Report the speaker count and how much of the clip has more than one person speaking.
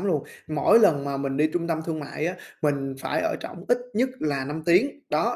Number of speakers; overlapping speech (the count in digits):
1, no overlap